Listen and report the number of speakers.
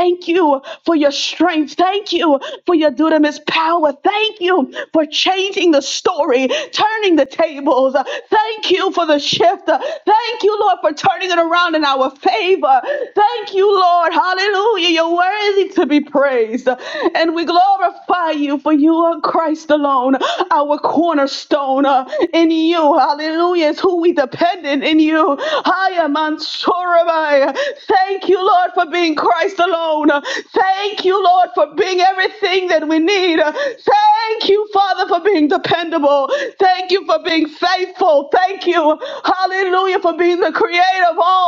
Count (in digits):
1